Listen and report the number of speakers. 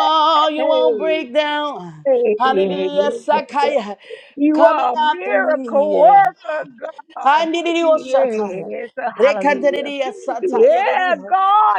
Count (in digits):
2